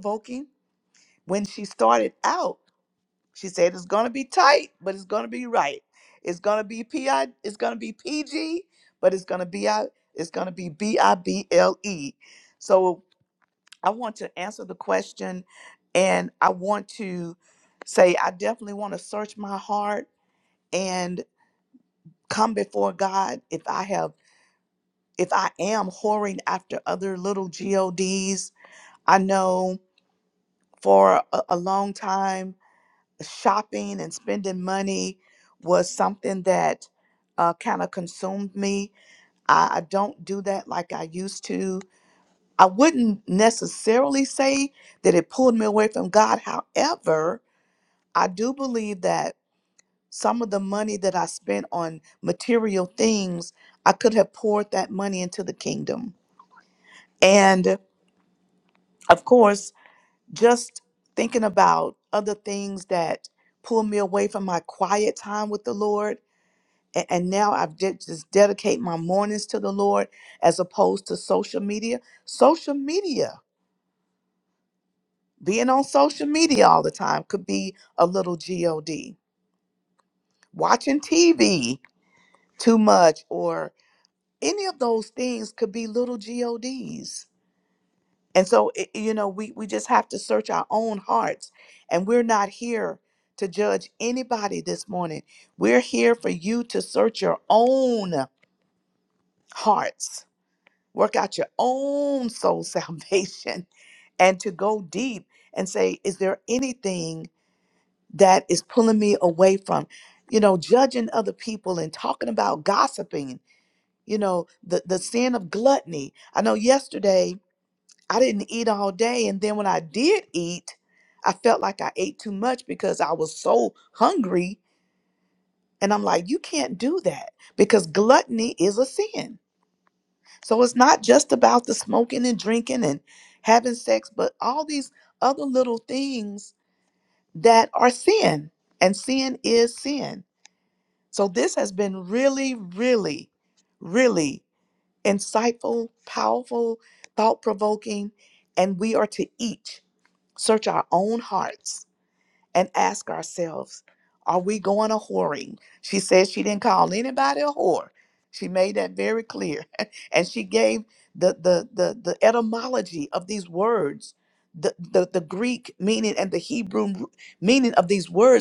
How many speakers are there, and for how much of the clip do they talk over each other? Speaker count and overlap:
1, no overlap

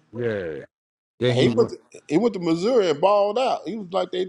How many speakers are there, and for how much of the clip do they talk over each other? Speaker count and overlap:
2, about 10%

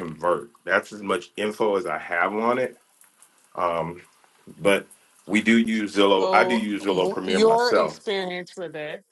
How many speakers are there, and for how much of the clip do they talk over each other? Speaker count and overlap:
2, about 19%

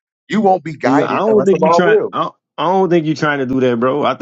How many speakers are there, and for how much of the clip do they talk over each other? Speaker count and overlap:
2, about 30%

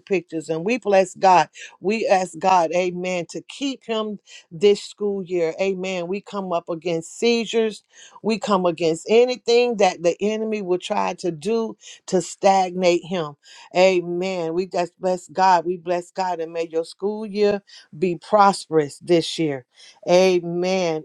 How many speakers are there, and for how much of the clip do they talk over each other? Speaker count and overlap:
1, no overlap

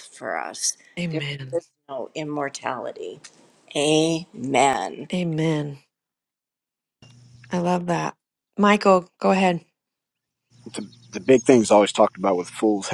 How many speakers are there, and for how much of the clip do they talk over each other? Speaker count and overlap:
3, about 2%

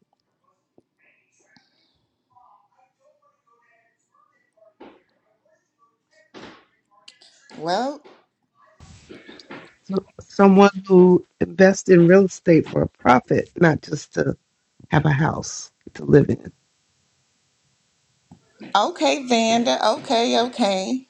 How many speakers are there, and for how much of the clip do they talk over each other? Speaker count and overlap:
2, no overlap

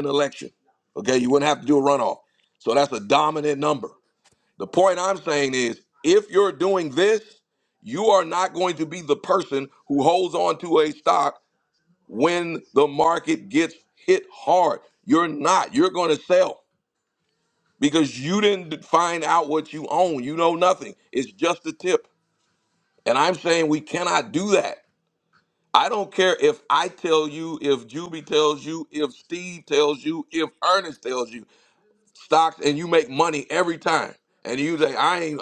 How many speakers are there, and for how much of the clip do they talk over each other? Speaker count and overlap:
1, no overlap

